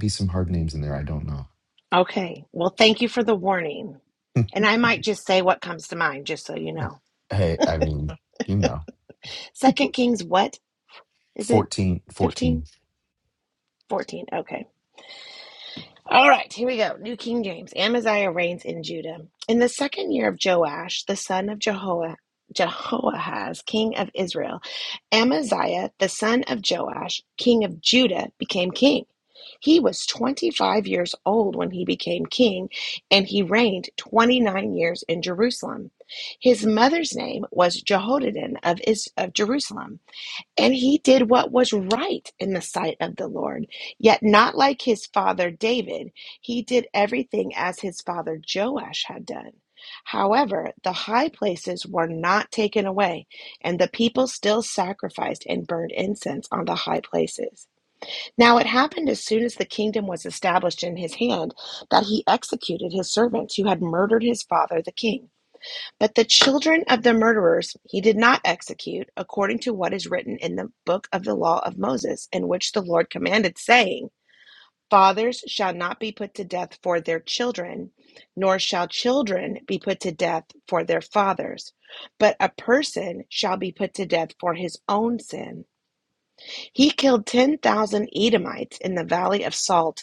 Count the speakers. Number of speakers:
2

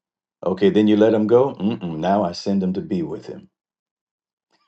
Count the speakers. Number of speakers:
1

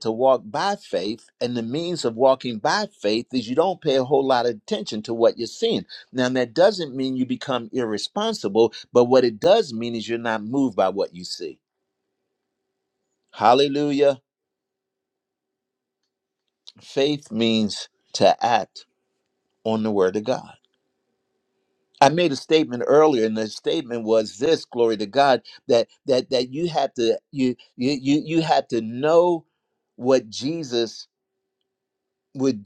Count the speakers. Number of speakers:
1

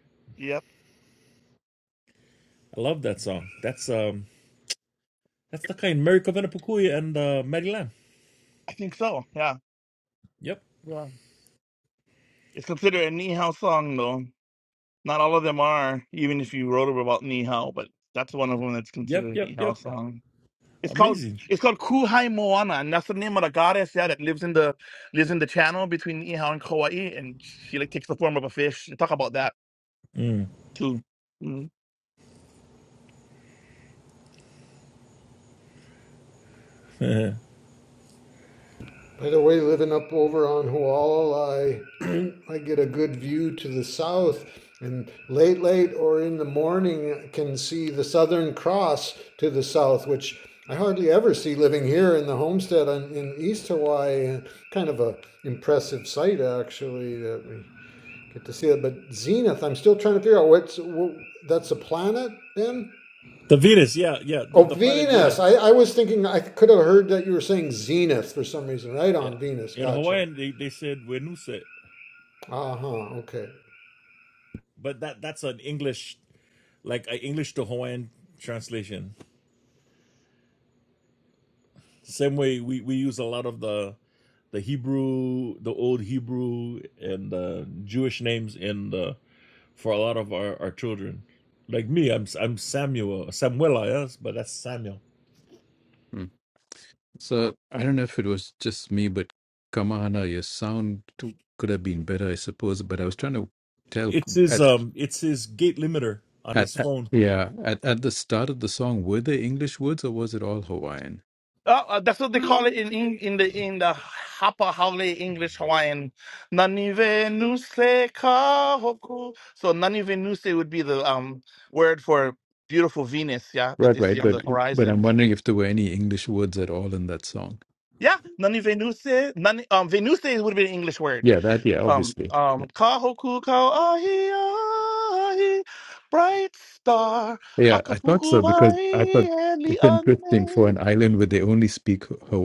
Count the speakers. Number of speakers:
4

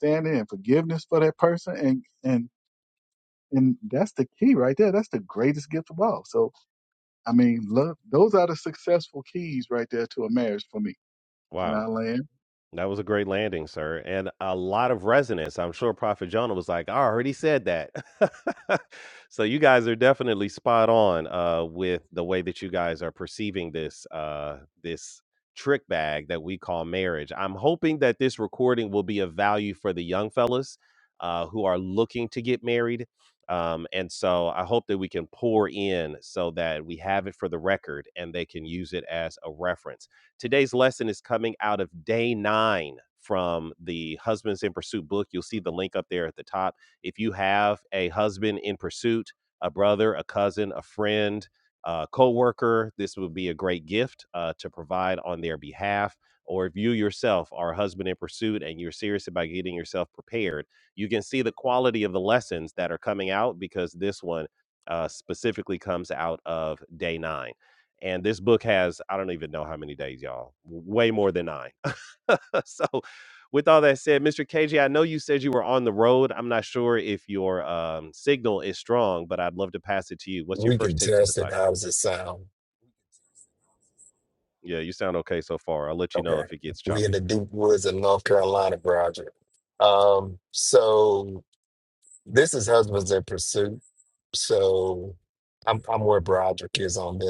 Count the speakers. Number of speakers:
3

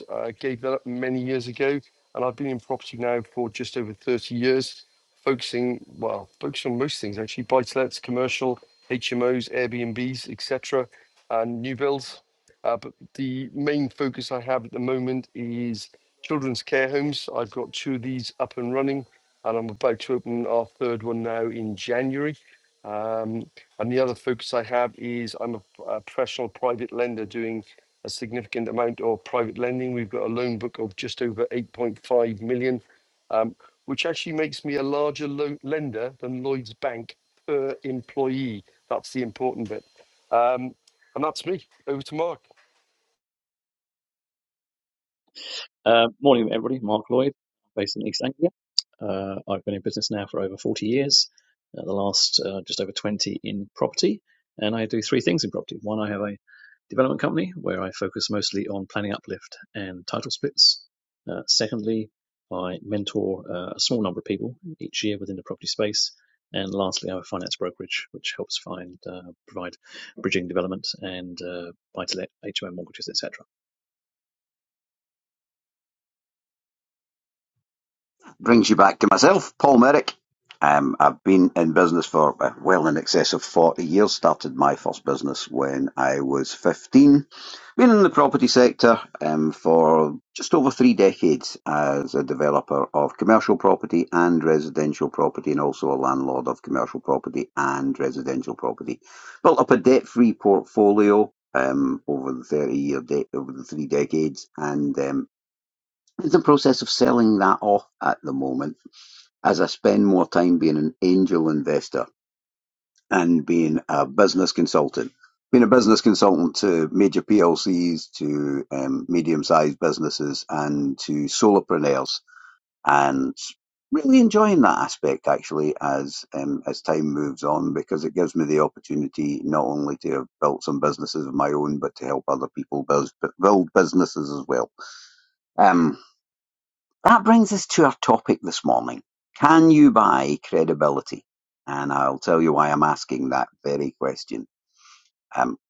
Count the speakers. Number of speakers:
3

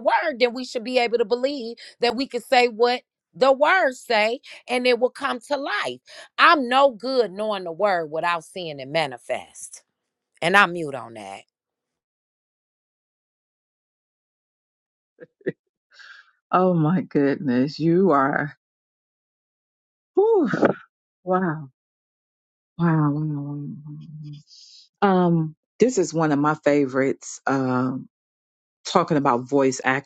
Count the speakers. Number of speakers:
2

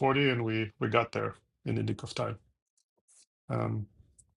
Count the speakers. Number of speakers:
1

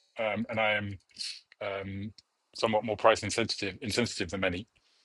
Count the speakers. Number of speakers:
1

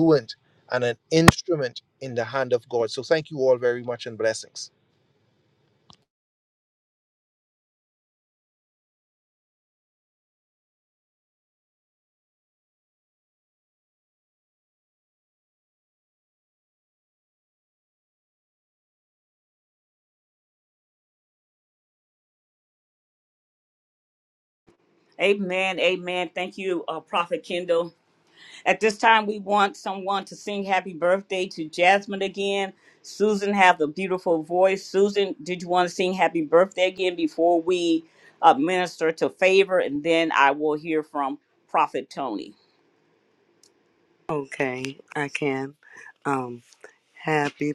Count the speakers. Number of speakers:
3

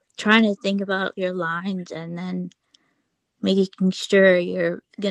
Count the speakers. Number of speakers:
1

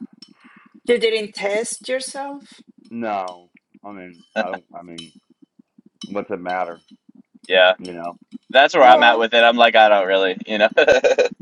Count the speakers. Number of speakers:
3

